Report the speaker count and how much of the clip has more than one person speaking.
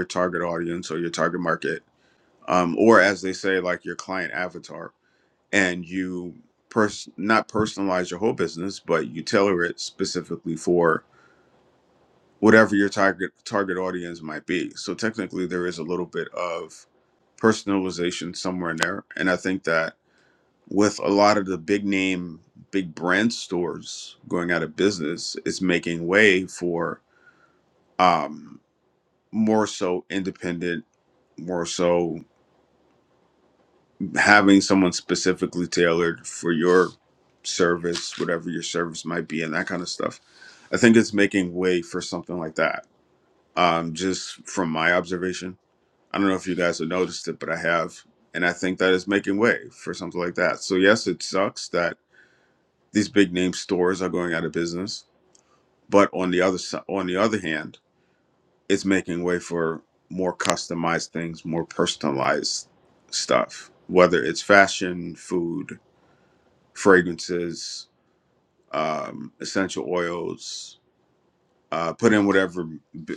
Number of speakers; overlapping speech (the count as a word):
one, no overlap